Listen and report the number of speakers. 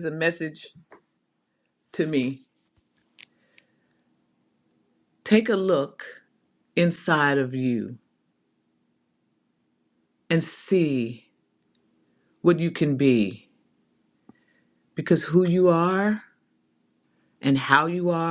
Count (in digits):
1